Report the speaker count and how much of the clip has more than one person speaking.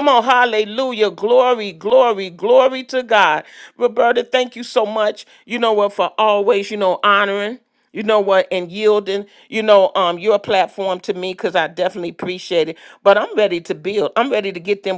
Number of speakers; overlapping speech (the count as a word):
one, no overlap